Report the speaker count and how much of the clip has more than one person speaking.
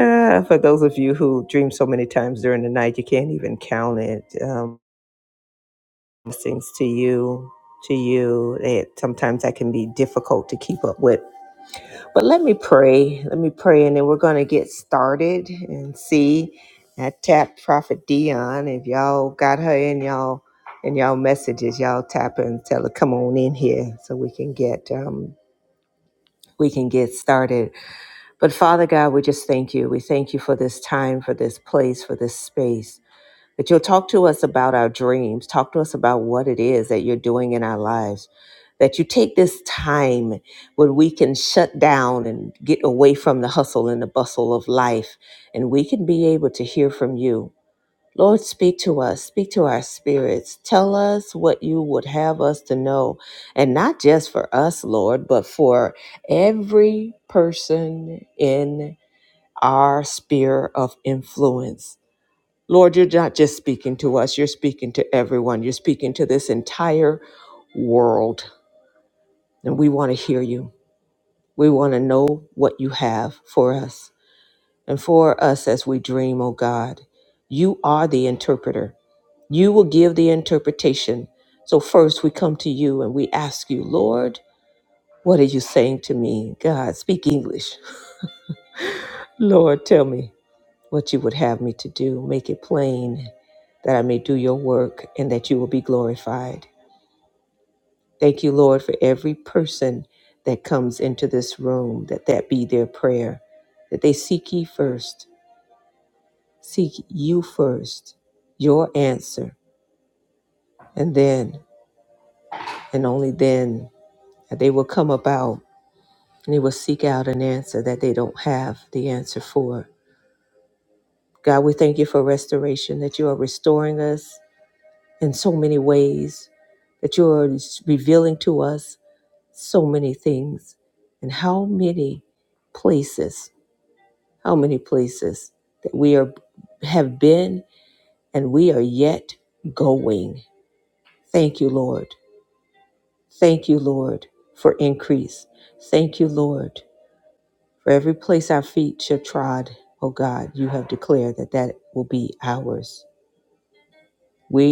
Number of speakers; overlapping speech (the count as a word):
one, no overlap